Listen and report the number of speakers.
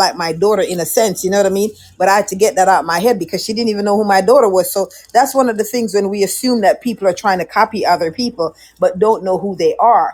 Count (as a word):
one